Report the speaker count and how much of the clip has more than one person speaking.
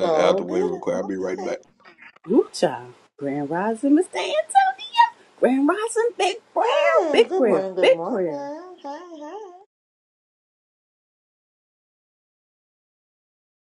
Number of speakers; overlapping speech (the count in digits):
3, about 22%